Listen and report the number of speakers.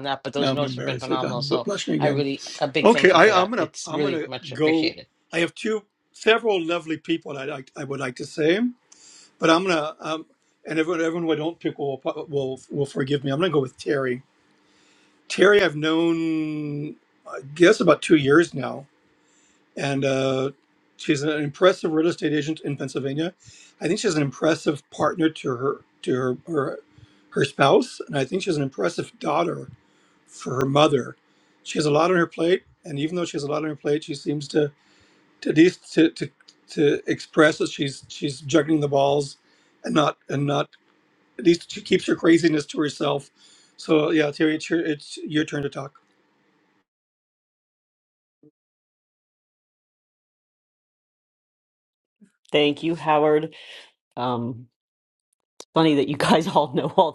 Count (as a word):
three